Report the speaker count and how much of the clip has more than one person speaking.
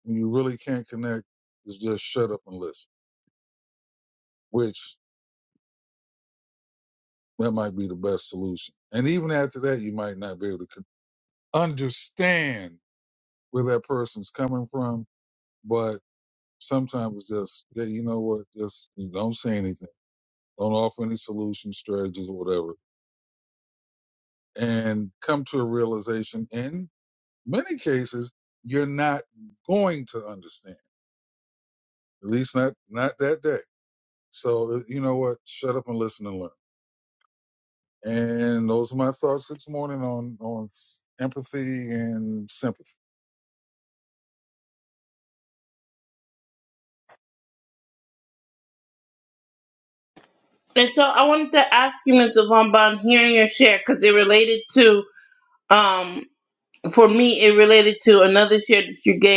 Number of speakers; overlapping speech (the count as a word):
two, no overlap